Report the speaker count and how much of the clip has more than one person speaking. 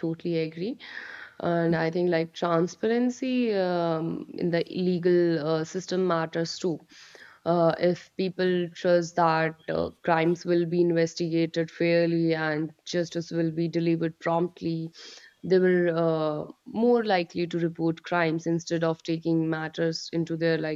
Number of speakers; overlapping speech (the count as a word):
one, no overlap